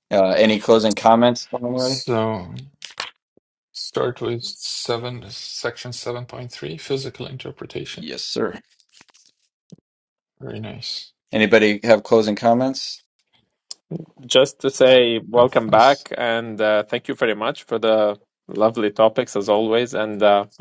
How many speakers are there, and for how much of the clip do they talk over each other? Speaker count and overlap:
3, about 4%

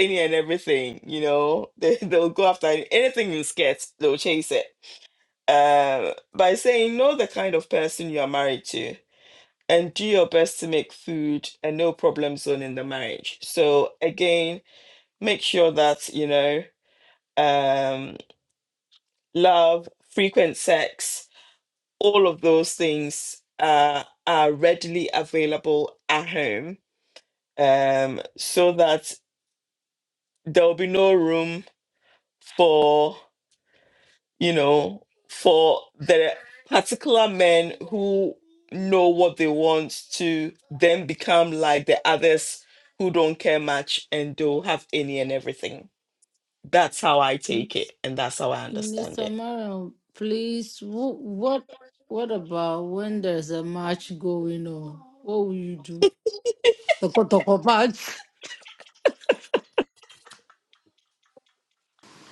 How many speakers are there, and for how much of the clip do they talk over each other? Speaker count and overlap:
2, about 1%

